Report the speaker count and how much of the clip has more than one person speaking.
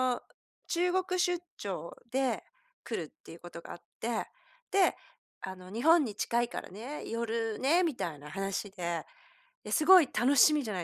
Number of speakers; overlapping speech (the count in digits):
1, no overlap